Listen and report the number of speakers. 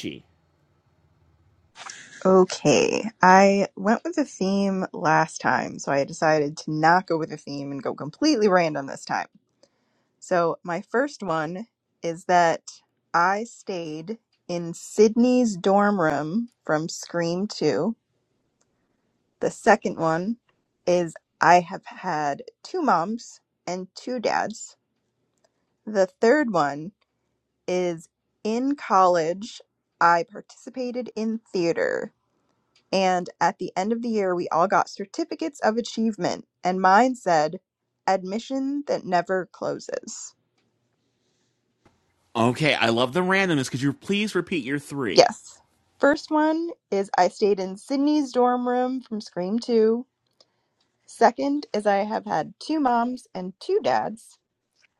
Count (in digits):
2